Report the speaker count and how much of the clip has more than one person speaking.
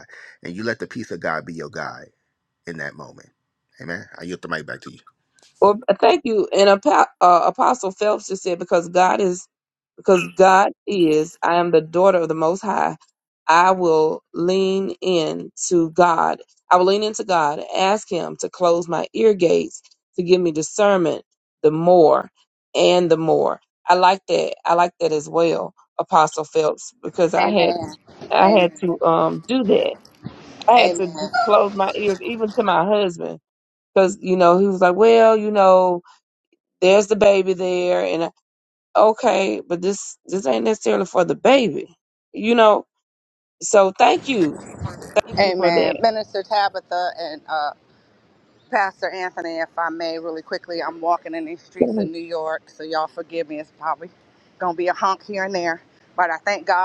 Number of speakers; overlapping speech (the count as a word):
three, about 2%